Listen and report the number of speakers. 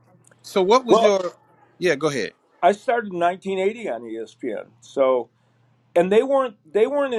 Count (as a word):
two